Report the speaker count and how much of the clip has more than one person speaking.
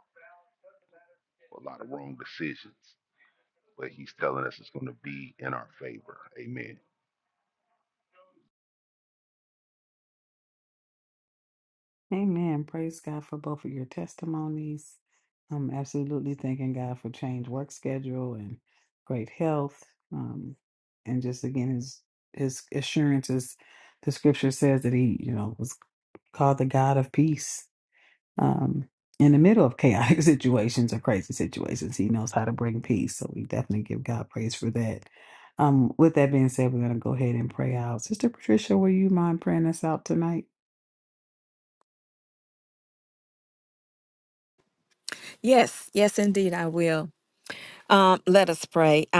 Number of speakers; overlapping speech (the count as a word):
three, no overlap